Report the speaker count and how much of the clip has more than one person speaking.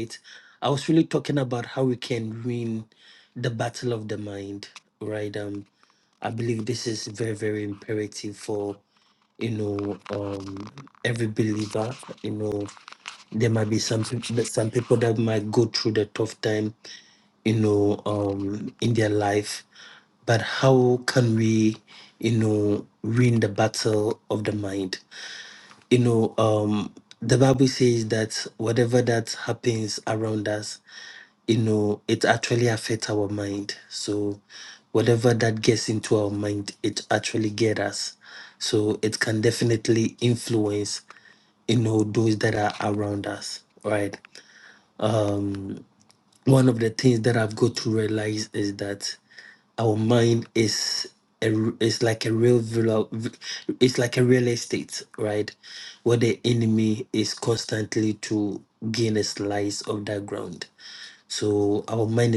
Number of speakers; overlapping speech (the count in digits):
1, no overlap